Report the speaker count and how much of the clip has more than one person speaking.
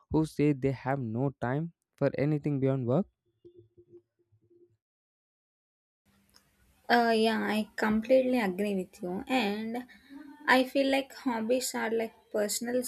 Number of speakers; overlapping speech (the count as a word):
two, no overlap